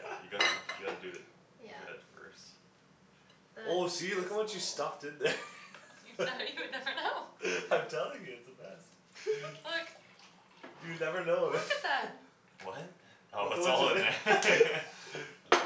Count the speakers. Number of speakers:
4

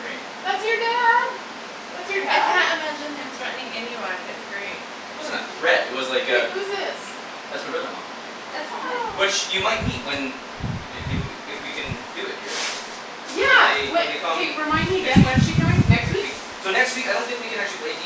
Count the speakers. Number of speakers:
3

